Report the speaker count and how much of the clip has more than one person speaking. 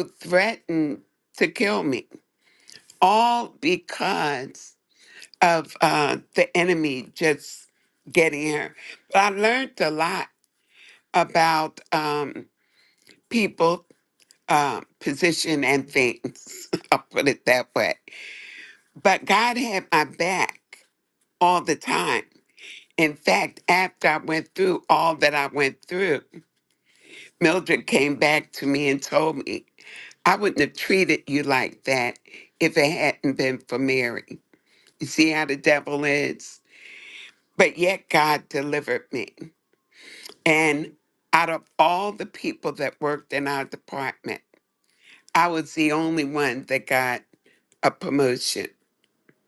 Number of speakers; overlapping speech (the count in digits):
1, no overlap